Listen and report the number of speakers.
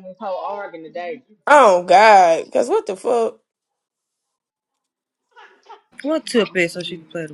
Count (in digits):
3